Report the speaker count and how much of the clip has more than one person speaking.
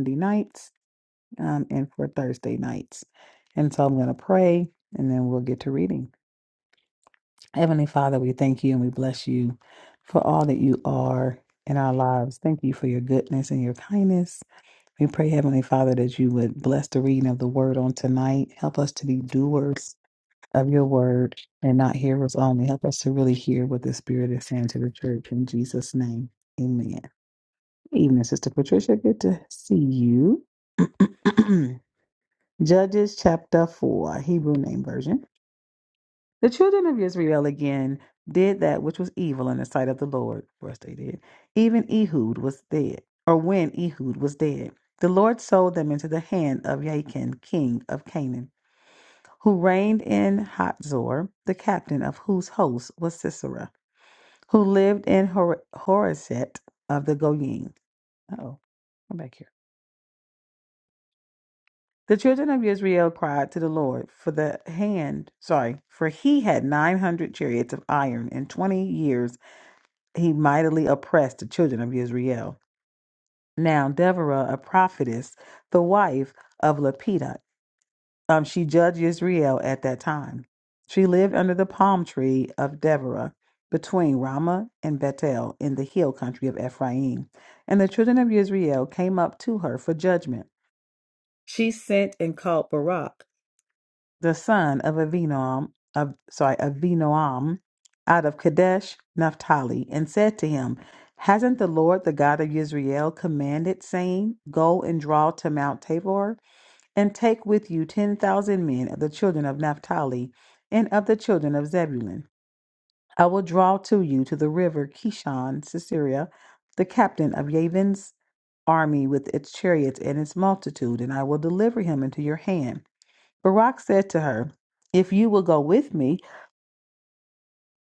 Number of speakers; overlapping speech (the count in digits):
1, no overlap